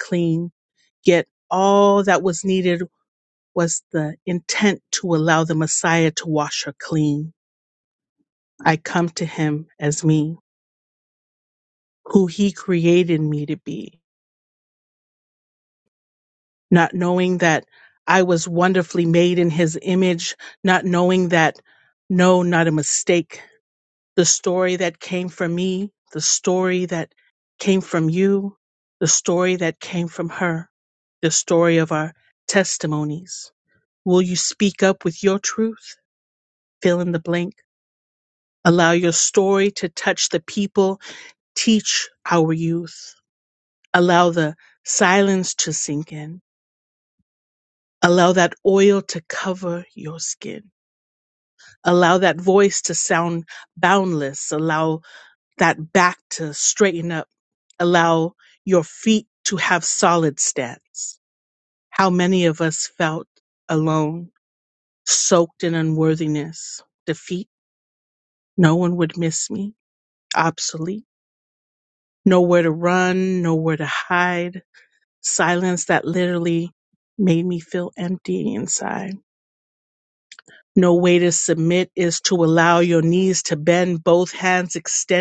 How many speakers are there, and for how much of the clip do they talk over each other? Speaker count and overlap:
one, no overlap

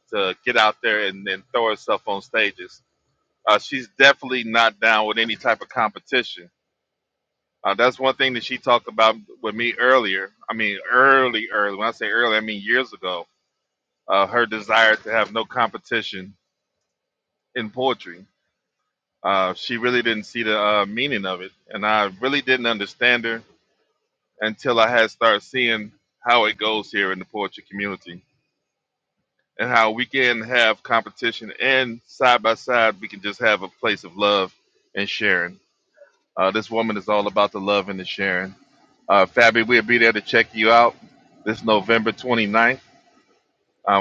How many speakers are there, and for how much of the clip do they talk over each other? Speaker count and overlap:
one, no overlap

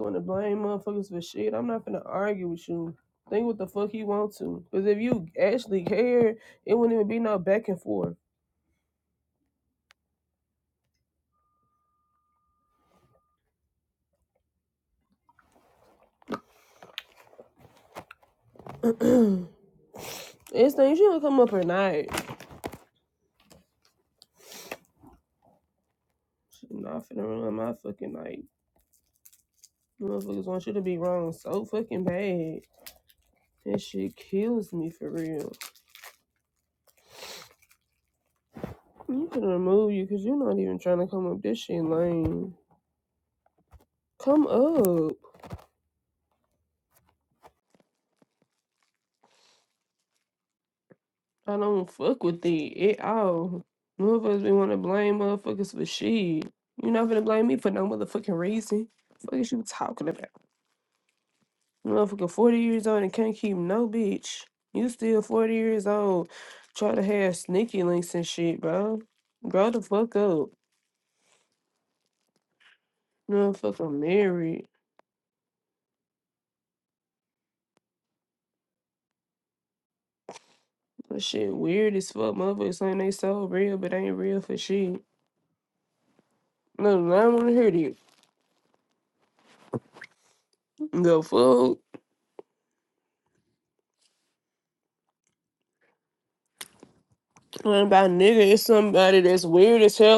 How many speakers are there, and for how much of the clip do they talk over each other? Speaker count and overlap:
one, no overlap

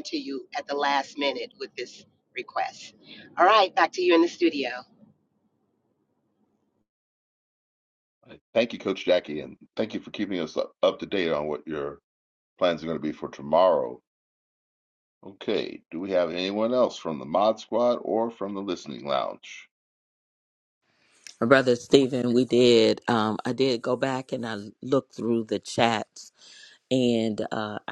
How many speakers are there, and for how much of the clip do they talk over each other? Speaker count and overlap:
three, no overlap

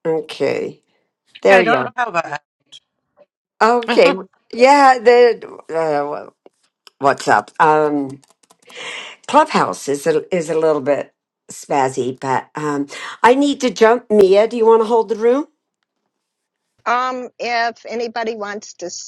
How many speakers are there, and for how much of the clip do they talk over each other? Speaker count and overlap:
three, about 4%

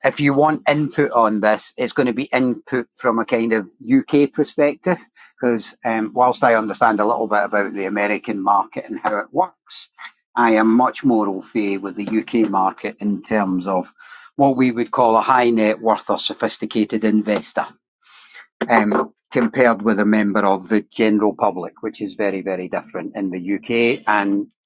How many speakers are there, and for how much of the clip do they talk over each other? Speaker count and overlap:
one, no overlap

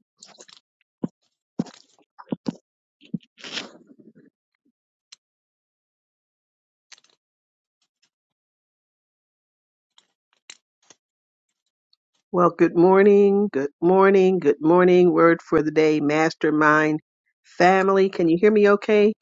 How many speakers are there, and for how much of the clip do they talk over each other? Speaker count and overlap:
one, no overlap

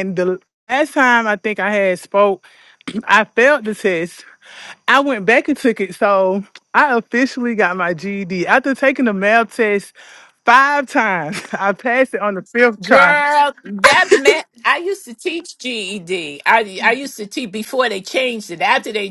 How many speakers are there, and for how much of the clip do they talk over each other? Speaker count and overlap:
two, about 2%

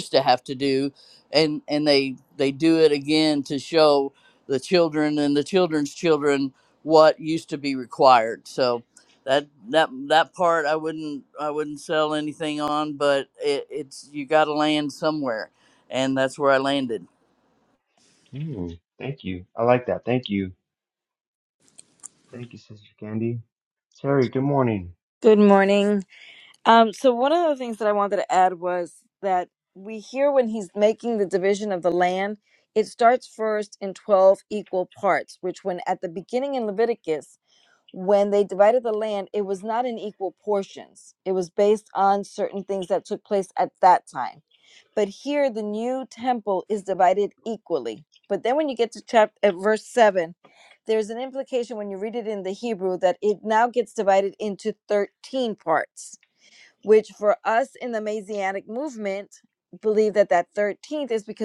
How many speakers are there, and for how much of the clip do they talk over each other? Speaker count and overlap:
three, no overlap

